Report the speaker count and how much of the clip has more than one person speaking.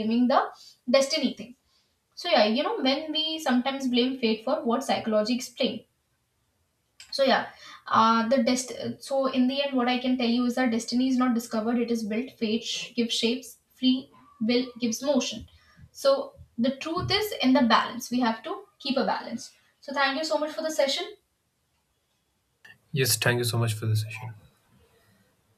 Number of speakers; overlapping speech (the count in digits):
2, no overlap